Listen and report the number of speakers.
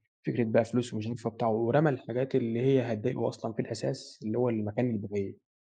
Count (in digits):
1